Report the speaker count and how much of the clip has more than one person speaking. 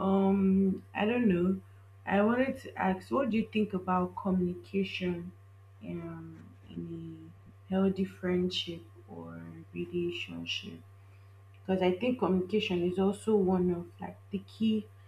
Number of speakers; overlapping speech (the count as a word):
one, no overlap